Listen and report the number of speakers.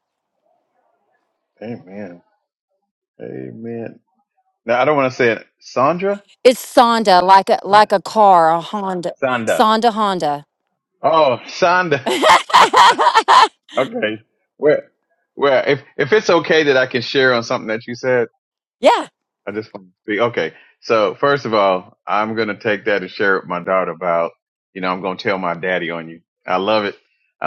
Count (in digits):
2